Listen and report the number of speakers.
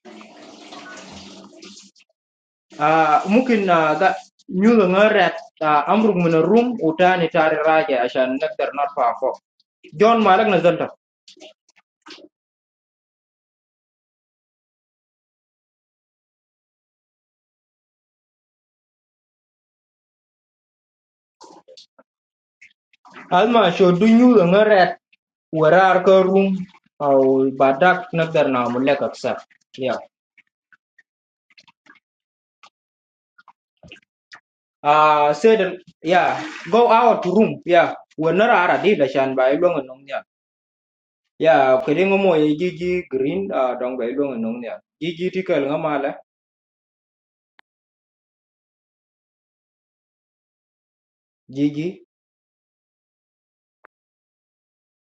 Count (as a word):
one